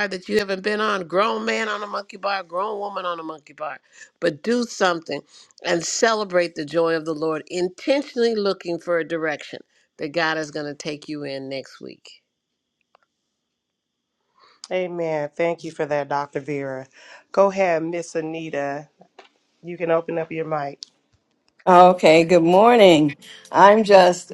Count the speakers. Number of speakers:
three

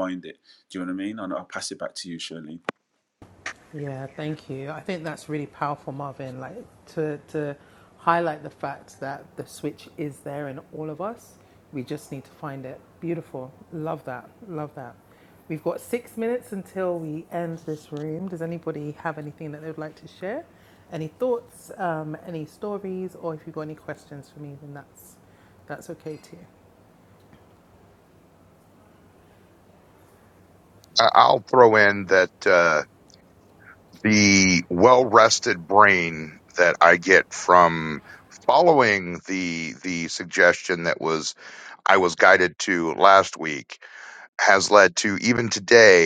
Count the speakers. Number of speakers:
three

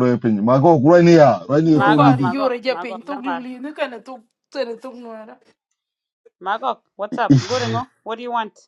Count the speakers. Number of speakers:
three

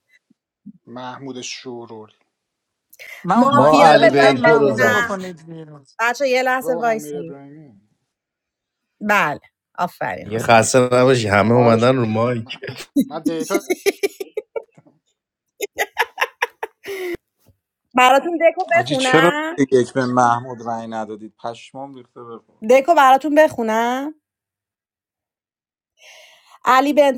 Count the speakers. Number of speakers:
five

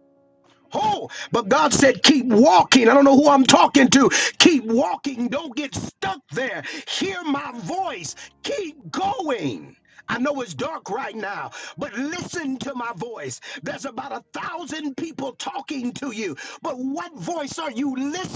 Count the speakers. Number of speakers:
one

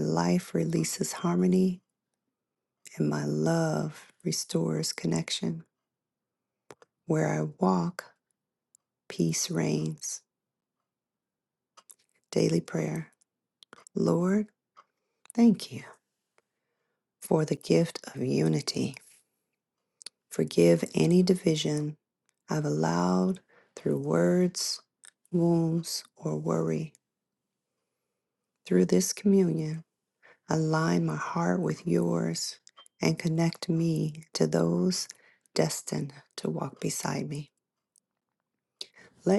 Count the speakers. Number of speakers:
one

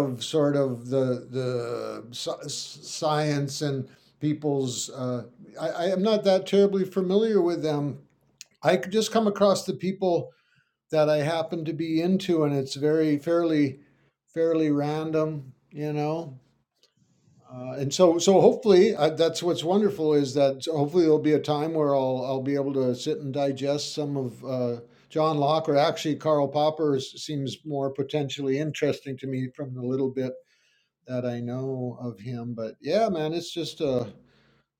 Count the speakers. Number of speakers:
one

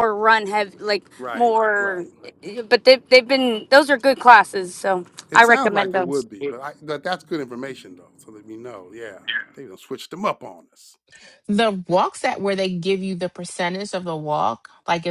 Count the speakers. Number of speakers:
three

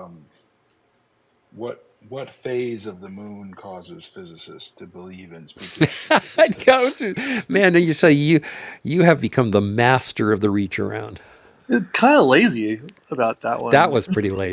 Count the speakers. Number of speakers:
three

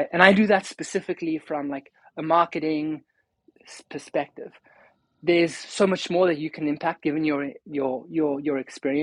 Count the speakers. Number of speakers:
one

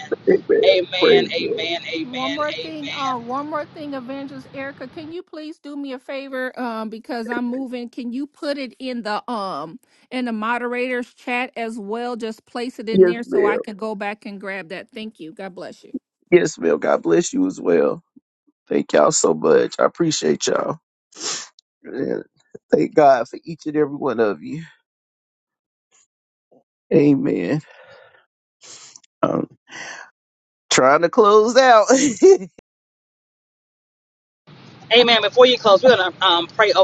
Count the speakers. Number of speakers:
three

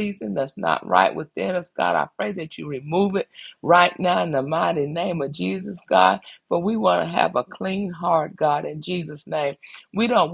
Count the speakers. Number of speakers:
one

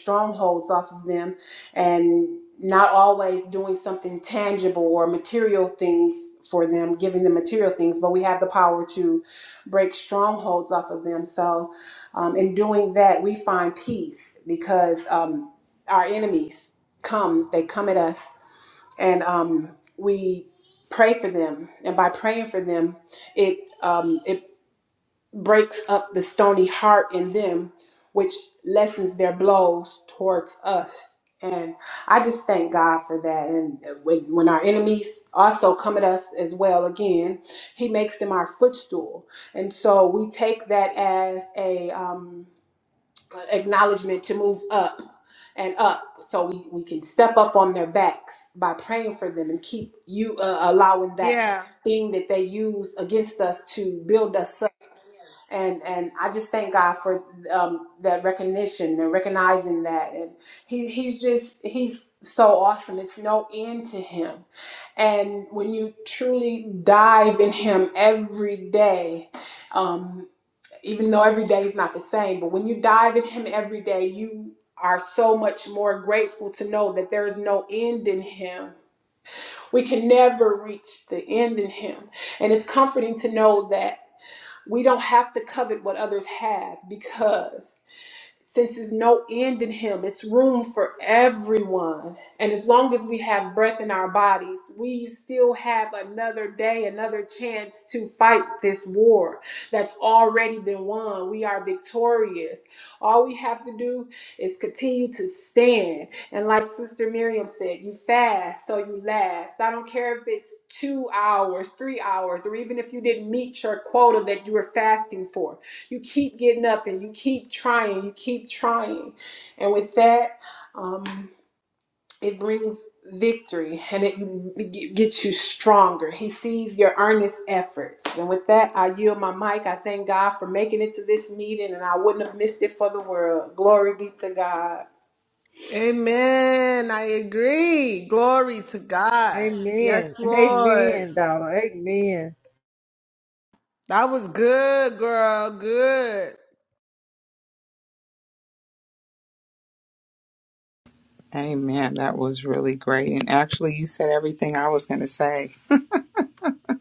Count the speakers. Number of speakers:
four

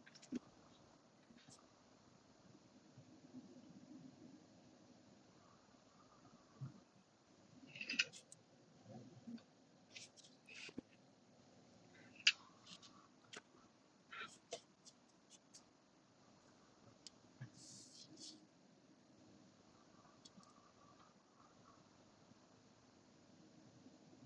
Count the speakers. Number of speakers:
zero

